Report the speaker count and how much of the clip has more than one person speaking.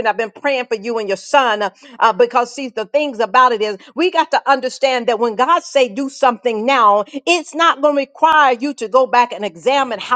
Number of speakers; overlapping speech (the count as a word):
one, no overlap